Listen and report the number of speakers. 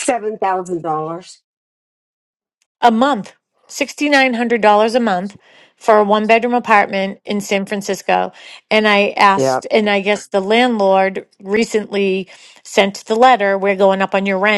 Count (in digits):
2